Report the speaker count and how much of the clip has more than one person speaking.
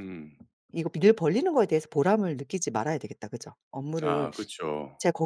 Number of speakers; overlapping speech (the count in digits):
2, about 6%